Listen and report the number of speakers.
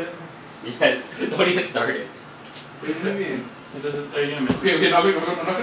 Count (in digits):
3